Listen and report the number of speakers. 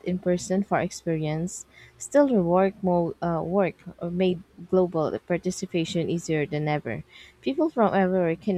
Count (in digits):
1